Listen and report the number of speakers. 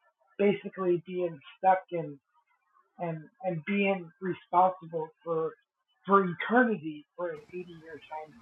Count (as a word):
one